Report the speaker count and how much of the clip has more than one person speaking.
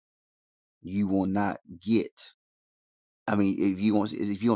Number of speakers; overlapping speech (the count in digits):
1, no overlap